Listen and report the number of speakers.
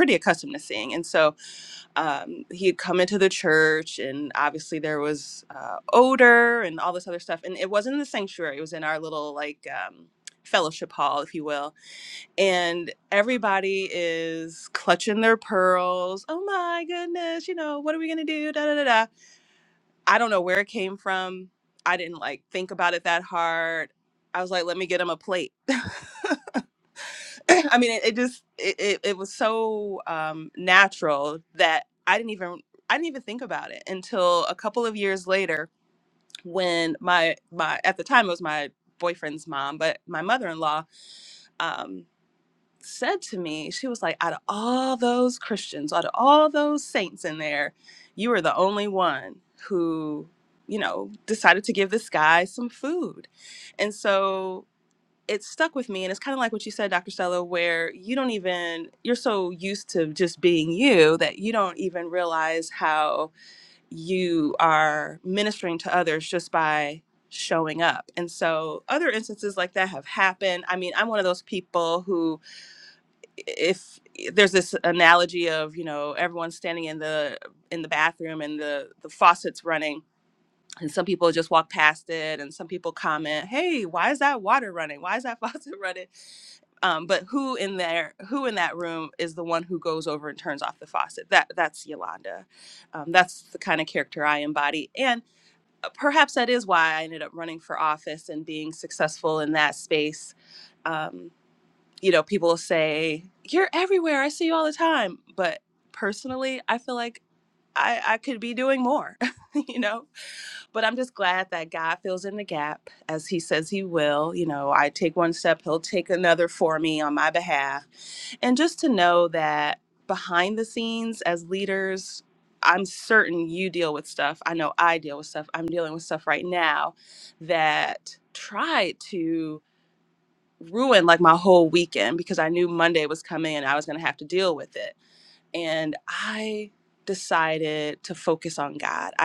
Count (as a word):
one